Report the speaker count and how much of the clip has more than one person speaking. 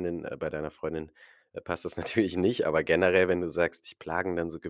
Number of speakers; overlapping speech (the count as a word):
one, no overlap